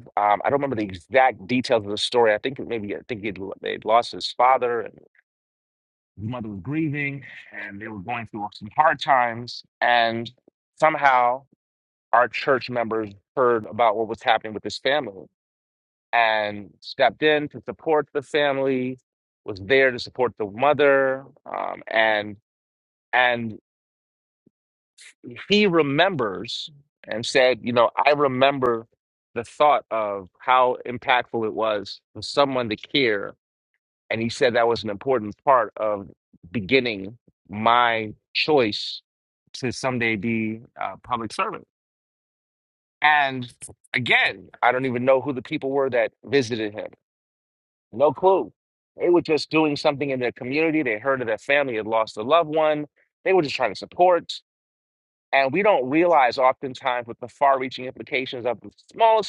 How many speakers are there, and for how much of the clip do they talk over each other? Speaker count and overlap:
1, no overlap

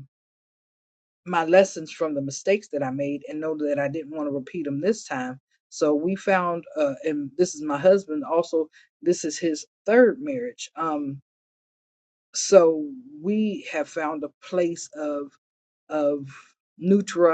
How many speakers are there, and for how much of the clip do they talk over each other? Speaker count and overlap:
1, no overlap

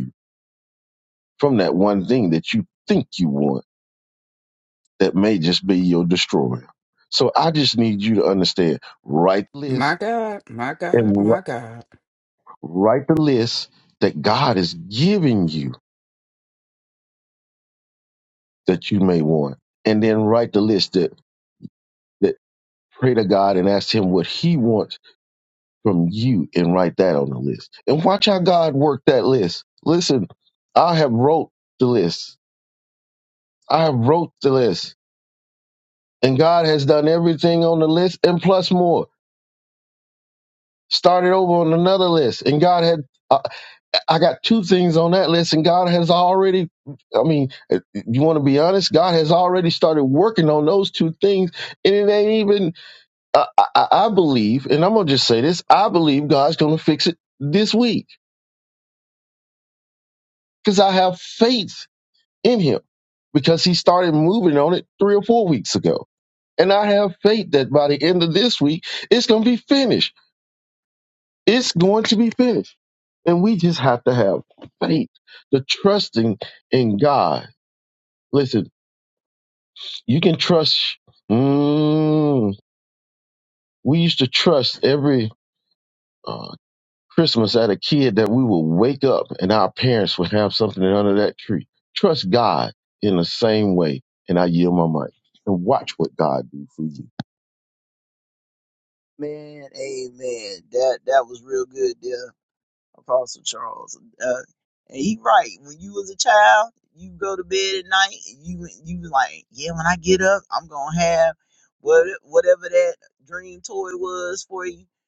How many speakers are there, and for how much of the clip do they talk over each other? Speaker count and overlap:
3, about 1%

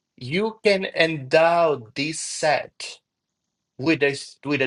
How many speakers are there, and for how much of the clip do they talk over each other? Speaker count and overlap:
1, no overlap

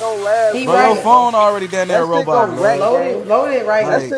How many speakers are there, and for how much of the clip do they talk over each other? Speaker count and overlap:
3, about 60%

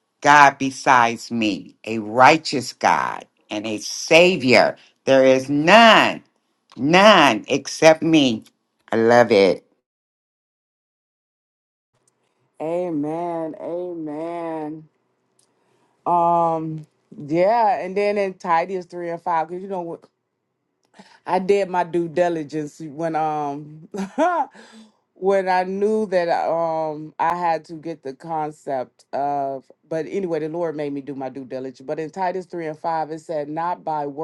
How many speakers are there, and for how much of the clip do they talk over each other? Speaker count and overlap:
2, no overlap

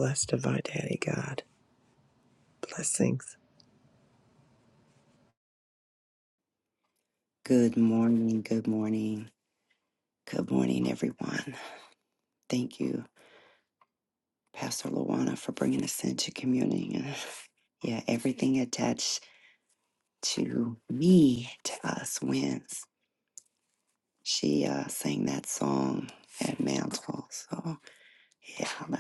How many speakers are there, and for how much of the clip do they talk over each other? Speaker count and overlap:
2, no overlap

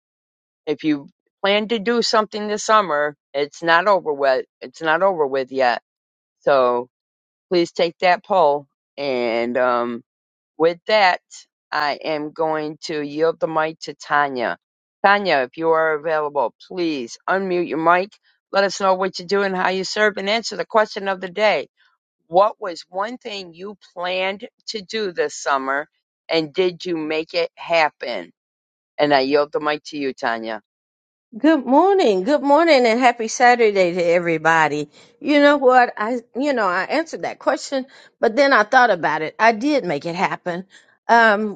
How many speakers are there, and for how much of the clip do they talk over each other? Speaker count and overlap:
2, no overlap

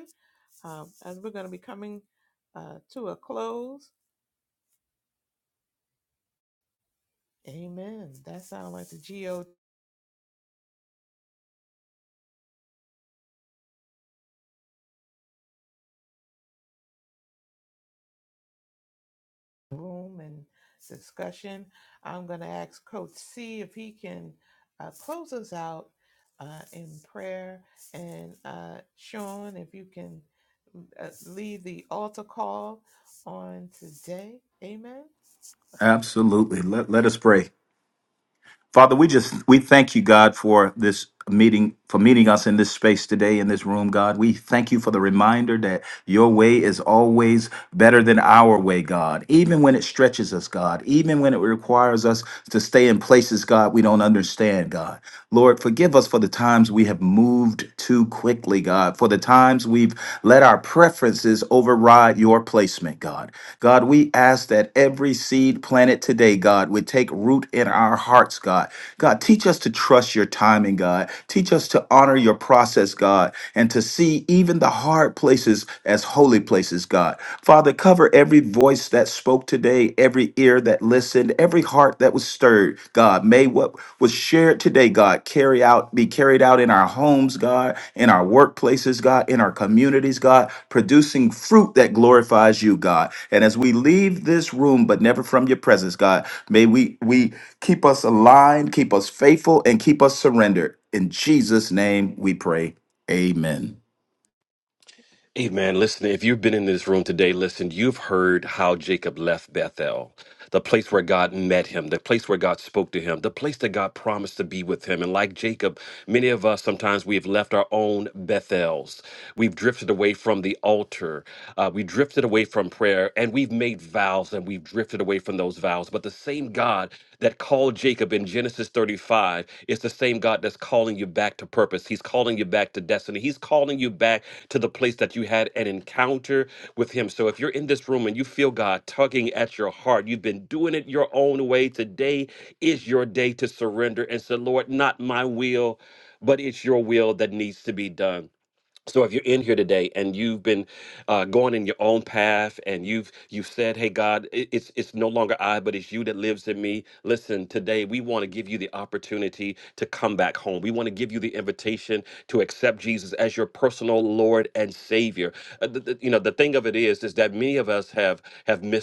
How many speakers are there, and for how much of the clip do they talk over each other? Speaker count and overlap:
3, no overlap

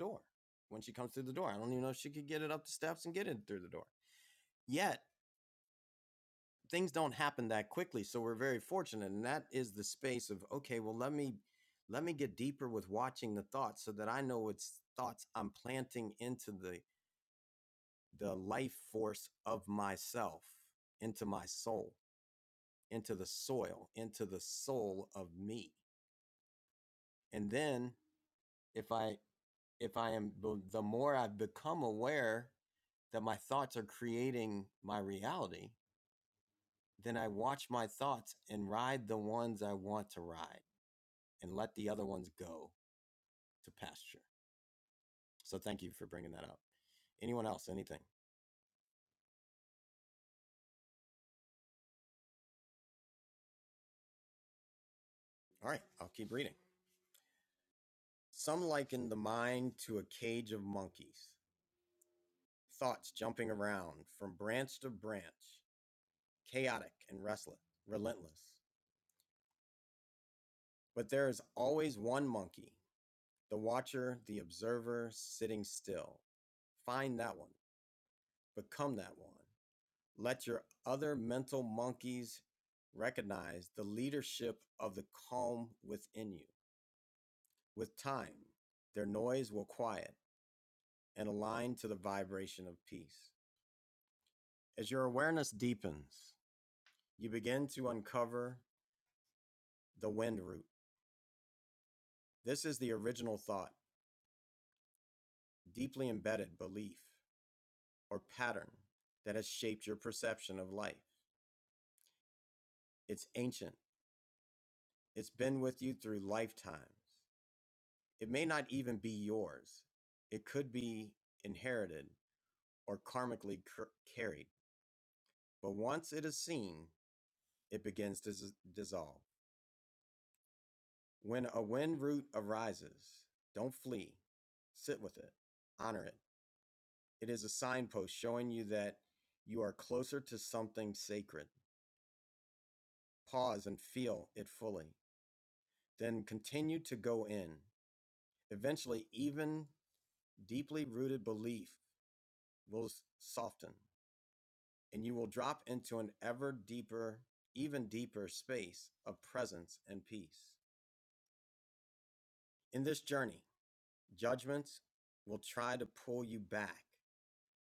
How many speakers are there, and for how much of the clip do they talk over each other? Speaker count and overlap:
1, no overlap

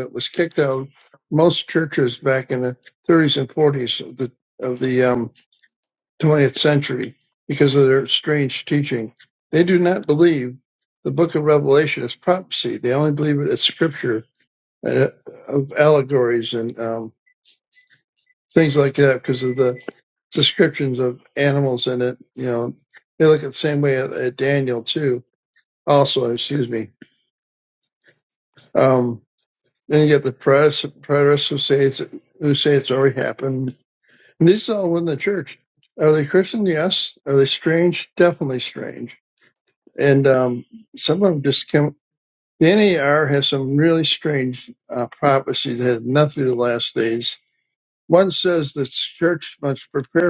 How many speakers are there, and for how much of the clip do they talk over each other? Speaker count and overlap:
1, no overlap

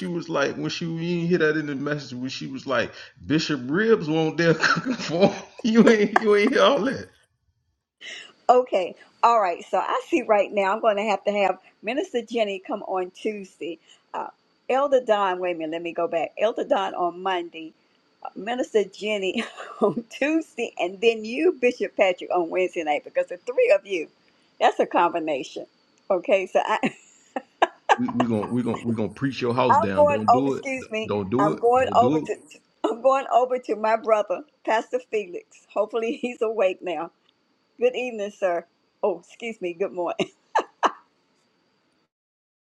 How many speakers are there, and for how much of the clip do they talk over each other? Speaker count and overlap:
2, about 5%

